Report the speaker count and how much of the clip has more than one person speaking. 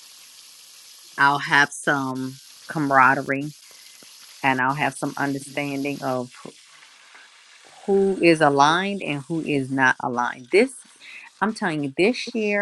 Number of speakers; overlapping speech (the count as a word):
one, no overlap